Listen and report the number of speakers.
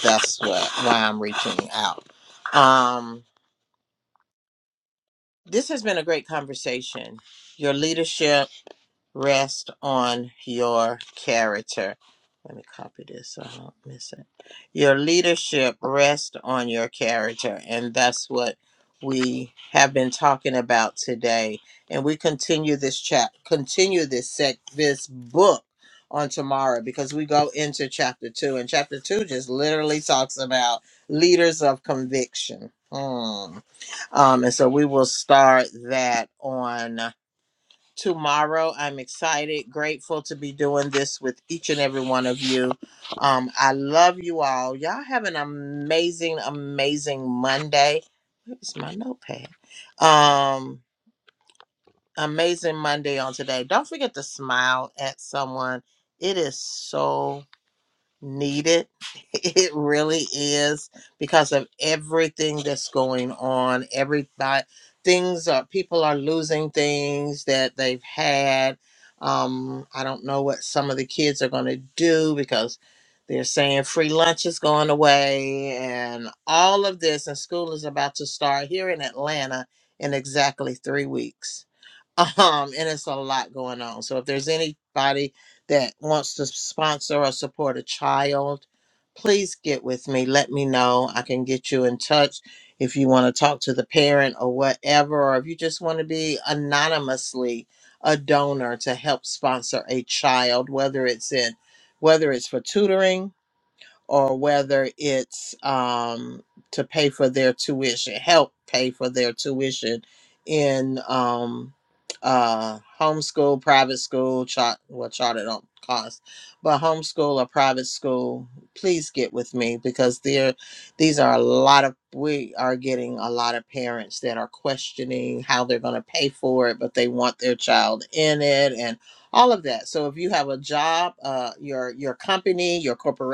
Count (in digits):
1